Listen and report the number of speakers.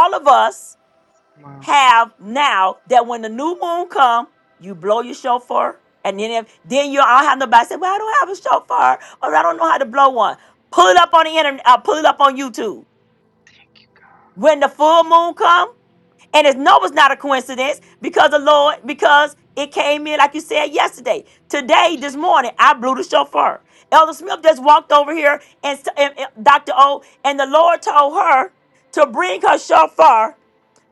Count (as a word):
one